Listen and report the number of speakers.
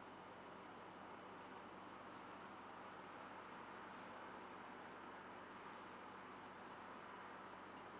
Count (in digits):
0